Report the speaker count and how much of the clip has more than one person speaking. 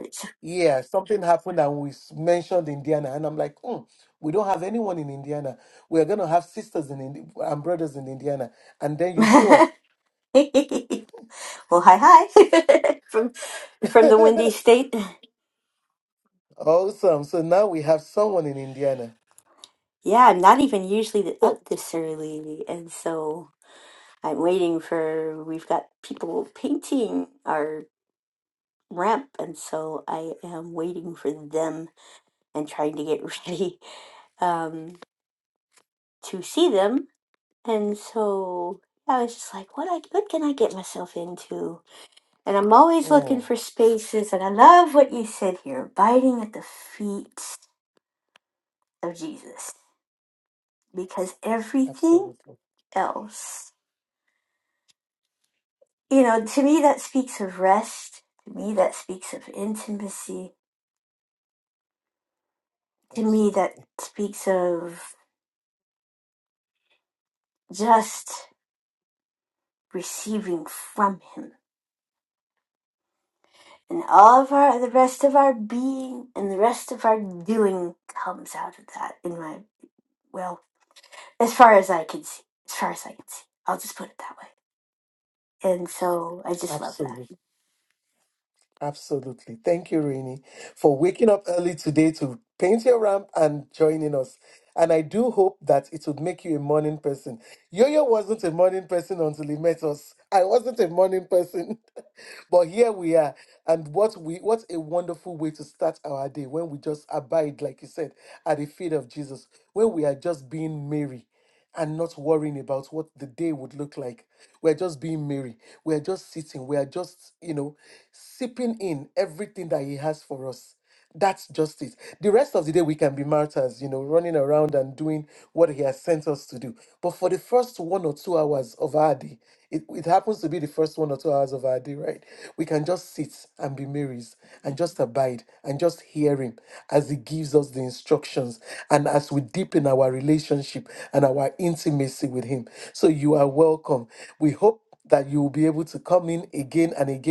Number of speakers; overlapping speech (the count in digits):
2, about 1%